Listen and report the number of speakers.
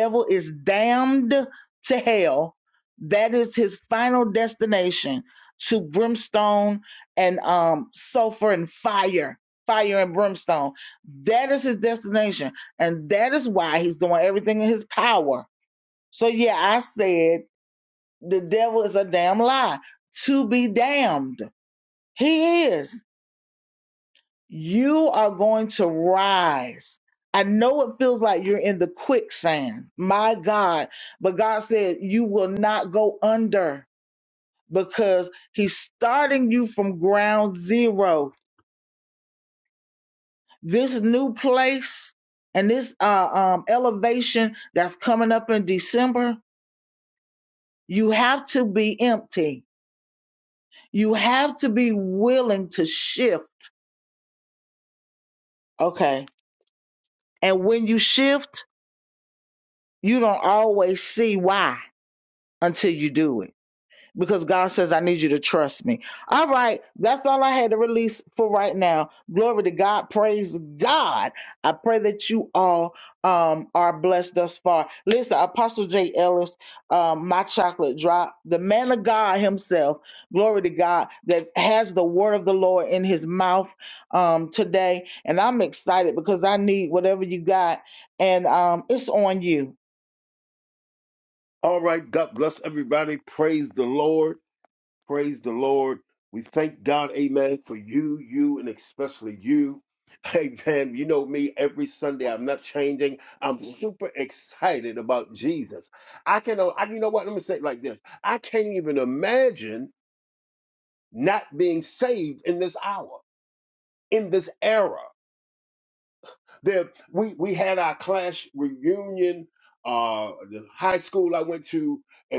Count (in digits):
2